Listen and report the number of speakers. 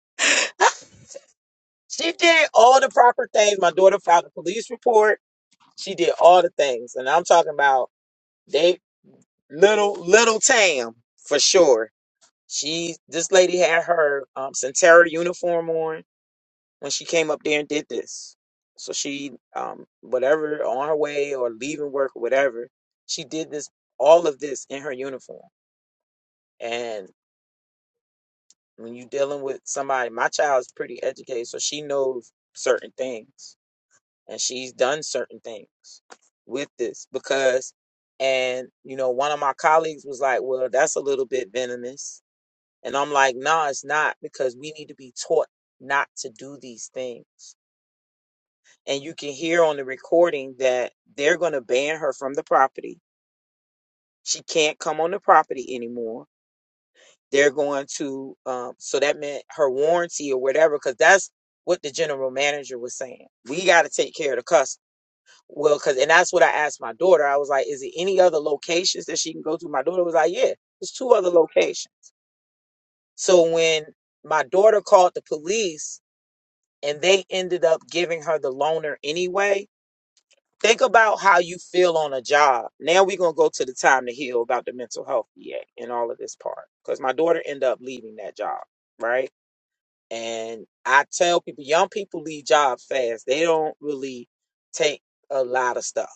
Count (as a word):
one